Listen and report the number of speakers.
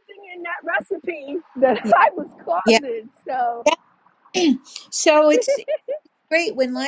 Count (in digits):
2